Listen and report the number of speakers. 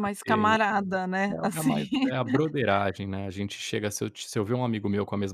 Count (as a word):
two